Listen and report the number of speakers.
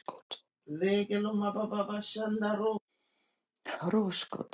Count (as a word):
two